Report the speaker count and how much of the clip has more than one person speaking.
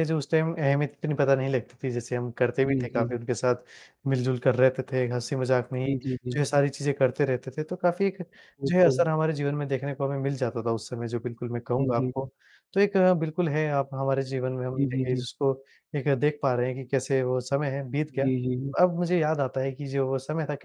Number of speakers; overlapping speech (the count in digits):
2, about 9%